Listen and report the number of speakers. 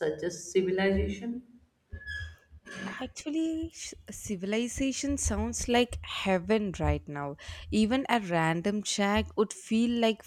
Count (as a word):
two